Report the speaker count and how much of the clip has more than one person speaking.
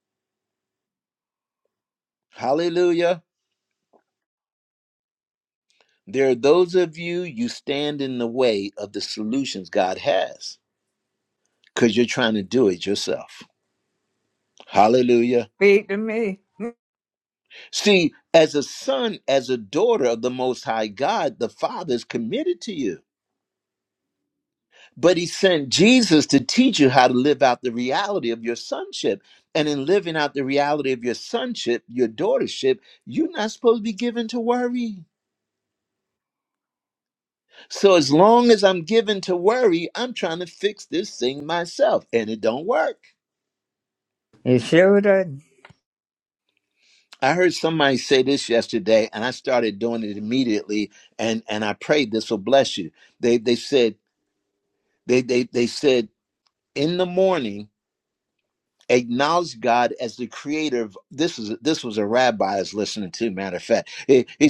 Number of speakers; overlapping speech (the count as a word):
two, no overlap